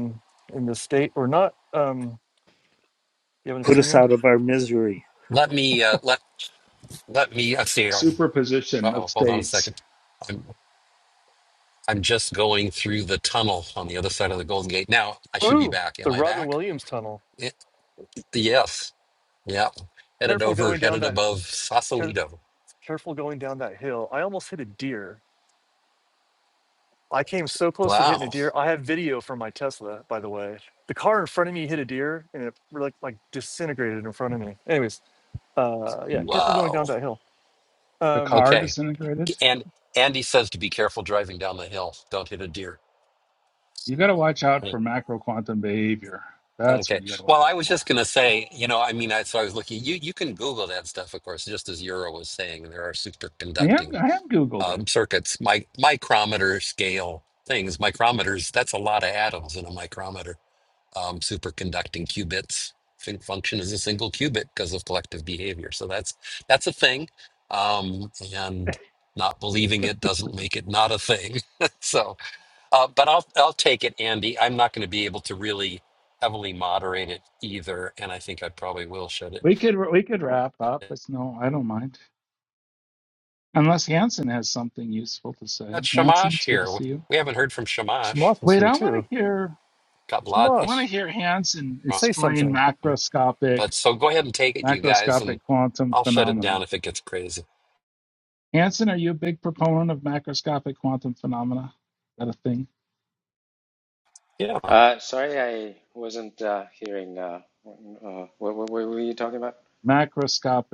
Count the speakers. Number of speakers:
five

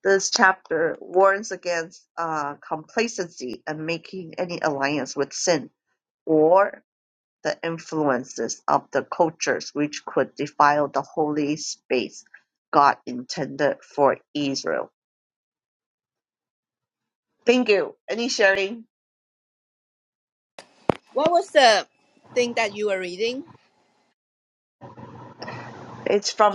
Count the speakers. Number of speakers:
two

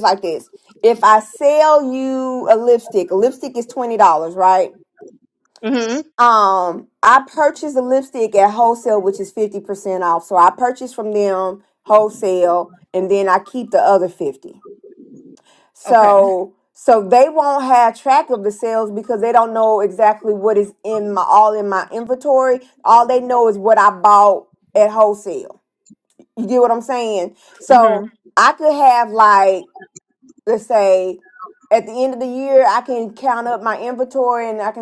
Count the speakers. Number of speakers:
two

